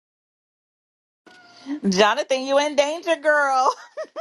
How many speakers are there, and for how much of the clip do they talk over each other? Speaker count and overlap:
1, no overlap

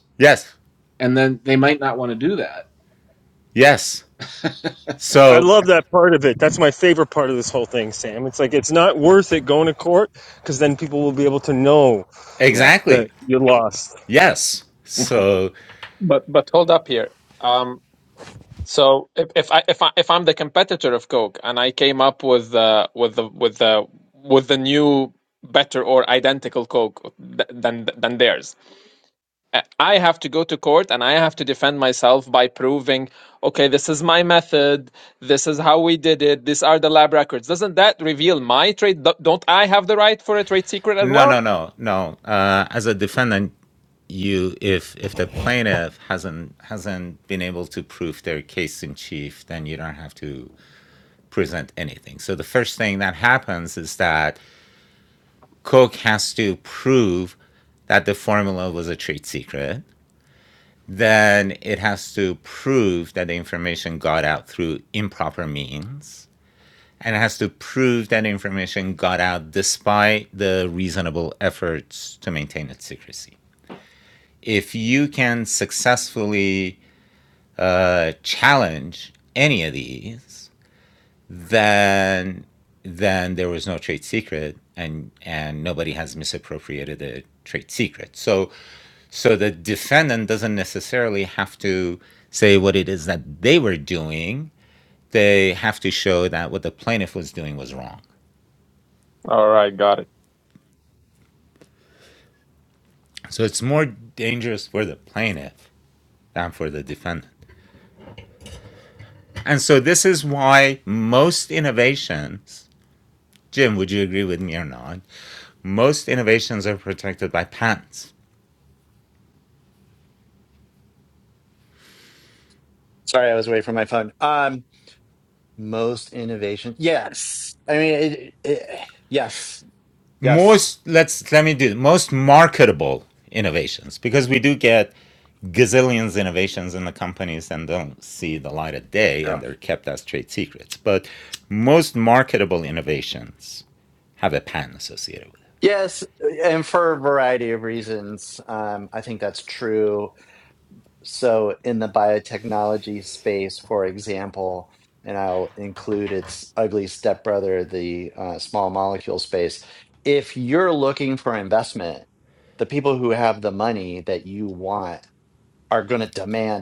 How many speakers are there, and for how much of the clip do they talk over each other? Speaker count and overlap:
5, about 1%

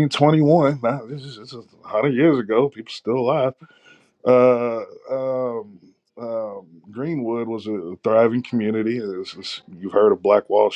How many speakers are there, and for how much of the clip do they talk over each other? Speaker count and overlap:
1, no overlap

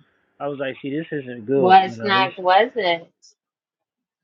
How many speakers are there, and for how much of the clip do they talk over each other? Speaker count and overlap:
2, about 18%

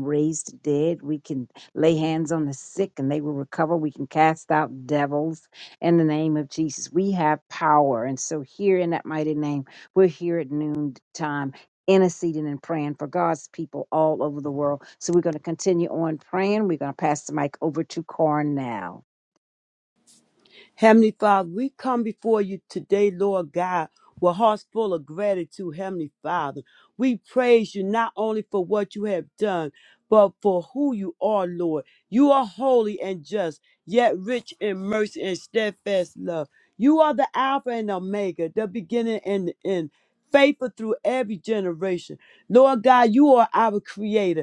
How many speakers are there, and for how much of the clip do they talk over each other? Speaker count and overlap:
2, no overlap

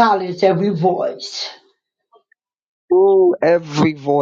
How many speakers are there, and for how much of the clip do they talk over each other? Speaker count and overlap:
2, under 1%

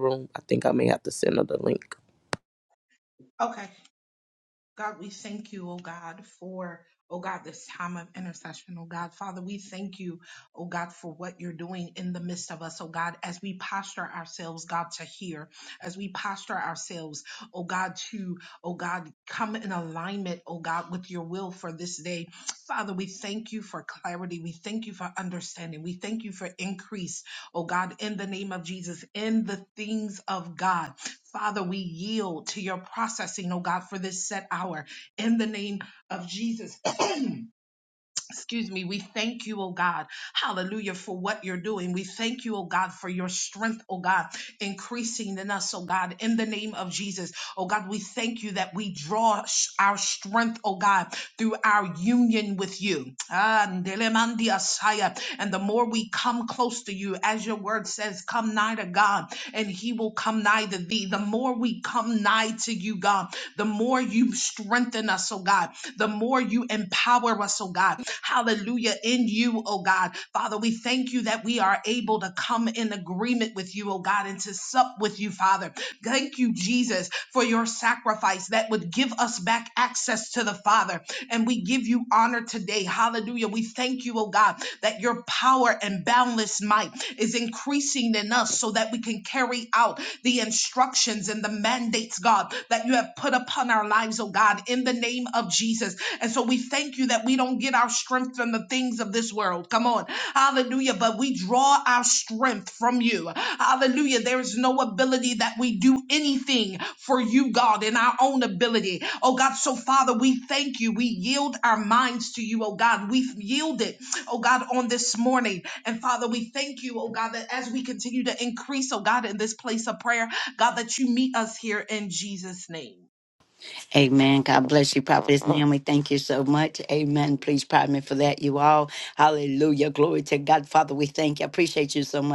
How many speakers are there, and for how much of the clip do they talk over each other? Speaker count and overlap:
3, no overlap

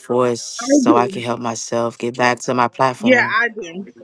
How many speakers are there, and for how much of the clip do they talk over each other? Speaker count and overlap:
2, about 23%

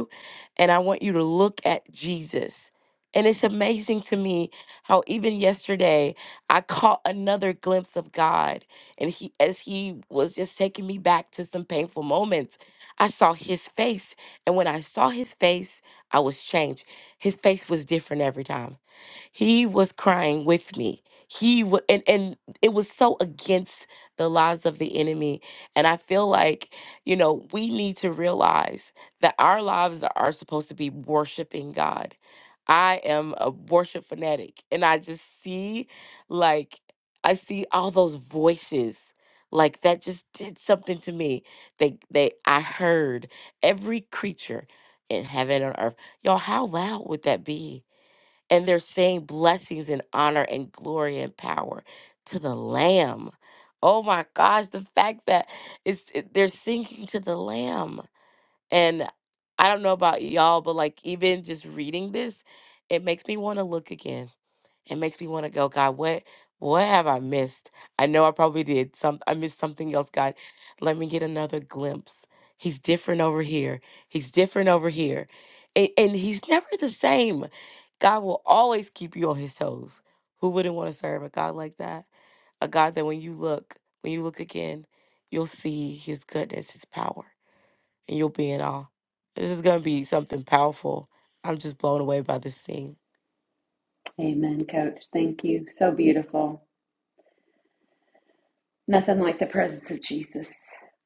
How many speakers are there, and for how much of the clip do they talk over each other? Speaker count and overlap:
2, no overlap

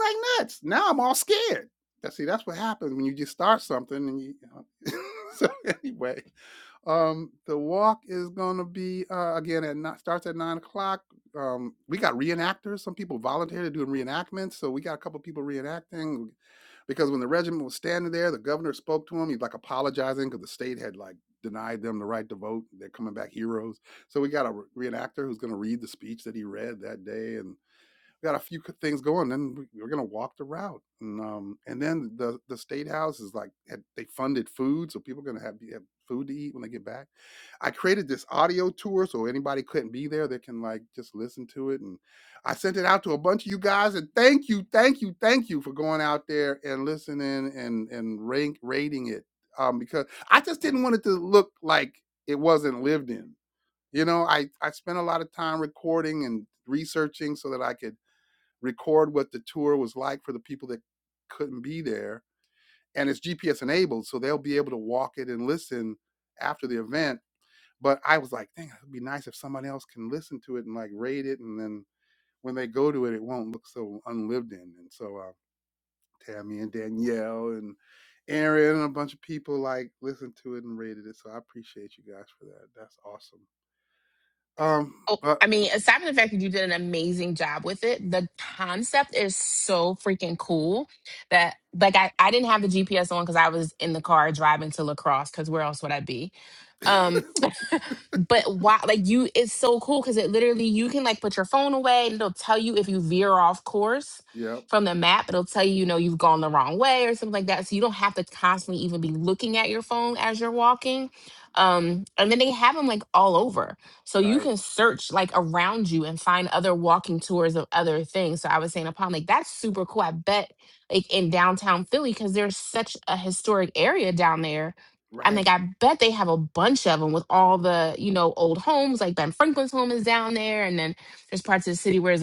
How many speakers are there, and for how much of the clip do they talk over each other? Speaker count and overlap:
2, about 1%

